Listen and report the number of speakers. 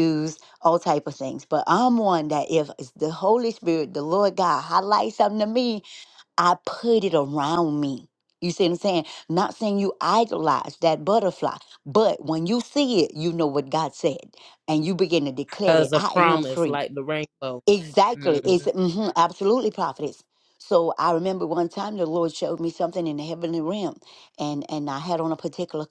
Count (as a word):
two